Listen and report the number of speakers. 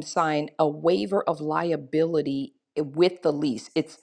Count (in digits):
1